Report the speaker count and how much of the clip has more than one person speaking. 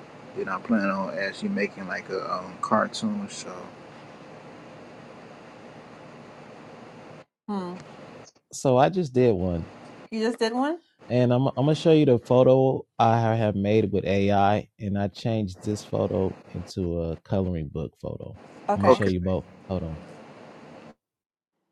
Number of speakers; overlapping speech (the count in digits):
3, about 2%